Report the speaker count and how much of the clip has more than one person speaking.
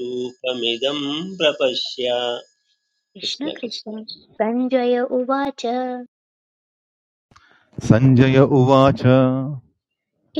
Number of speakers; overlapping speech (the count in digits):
3, about 5%